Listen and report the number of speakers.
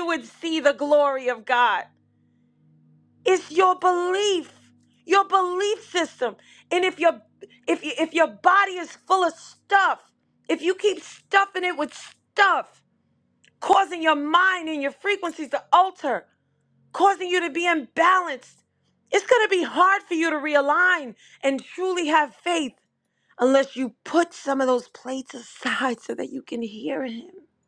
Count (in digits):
1